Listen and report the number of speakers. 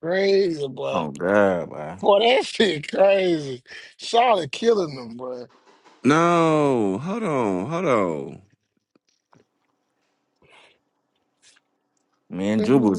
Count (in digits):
3